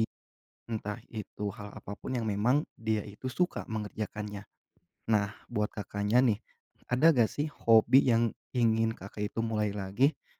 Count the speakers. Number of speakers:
1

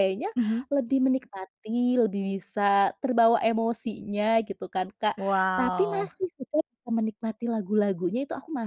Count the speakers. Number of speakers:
2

